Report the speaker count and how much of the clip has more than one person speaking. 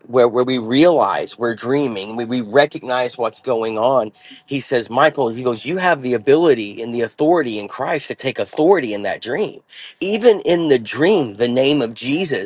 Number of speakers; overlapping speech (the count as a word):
one, no overlap